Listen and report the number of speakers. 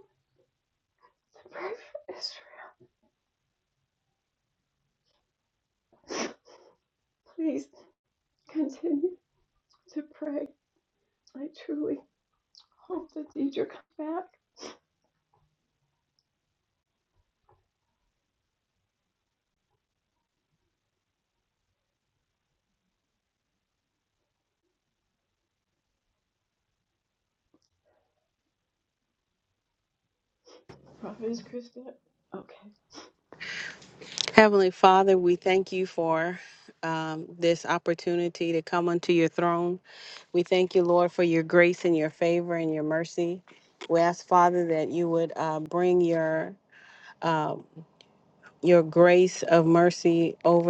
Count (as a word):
two